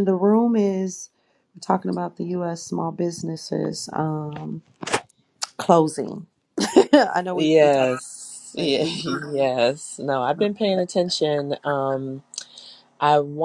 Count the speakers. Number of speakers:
2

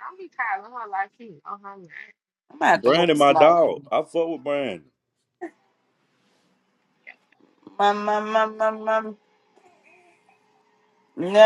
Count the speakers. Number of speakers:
3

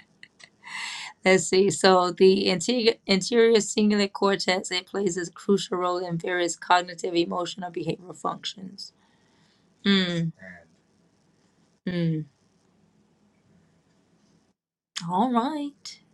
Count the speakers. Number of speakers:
1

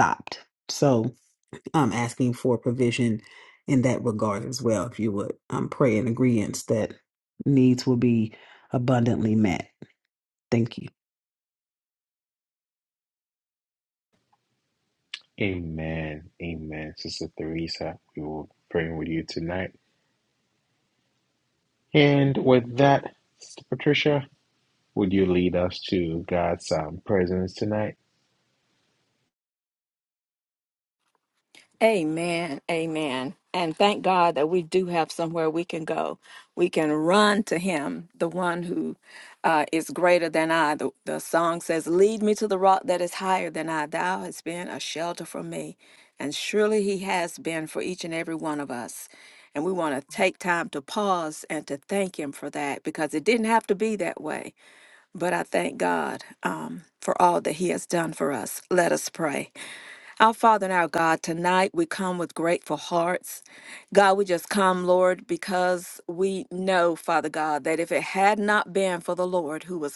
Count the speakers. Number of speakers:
3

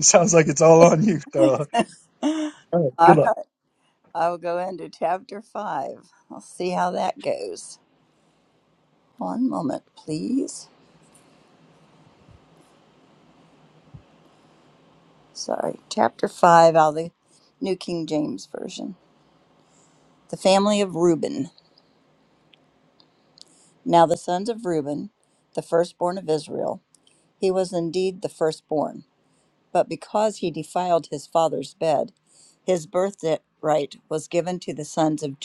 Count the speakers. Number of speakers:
2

